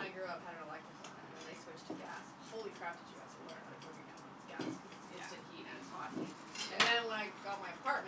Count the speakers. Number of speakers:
one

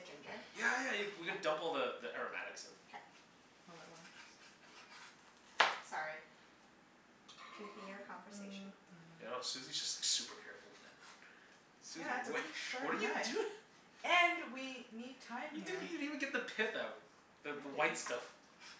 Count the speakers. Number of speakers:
three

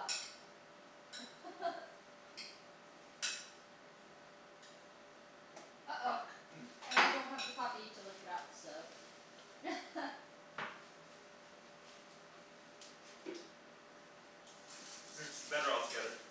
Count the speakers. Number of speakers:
two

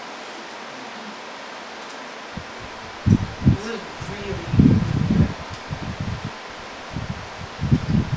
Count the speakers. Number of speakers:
one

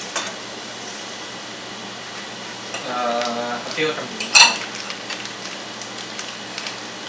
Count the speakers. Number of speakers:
one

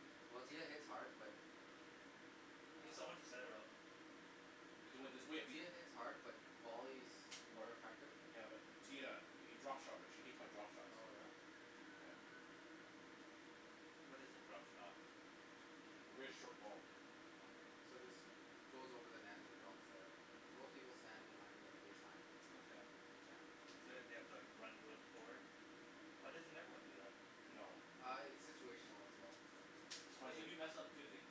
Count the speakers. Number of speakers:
four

